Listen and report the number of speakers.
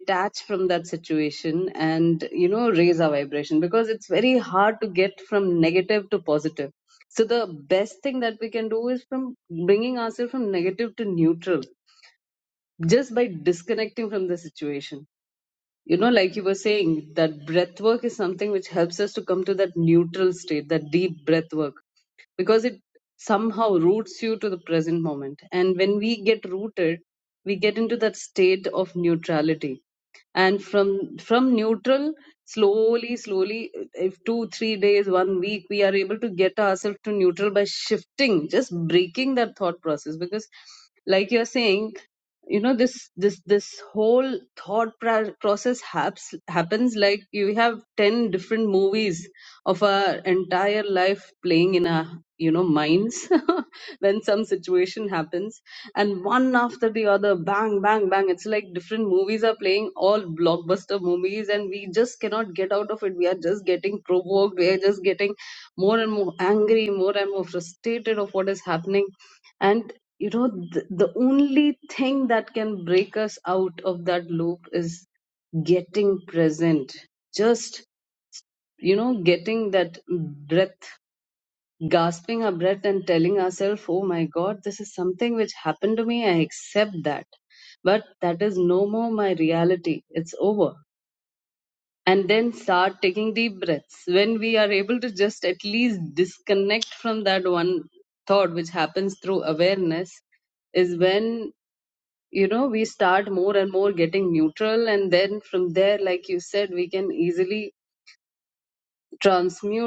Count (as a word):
one